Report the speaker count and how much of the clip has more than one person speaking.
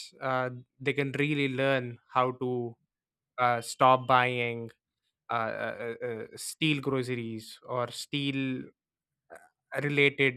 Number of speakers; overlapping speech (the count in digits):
1, no overlap